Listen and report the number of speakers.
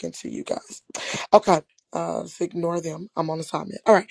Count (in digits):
1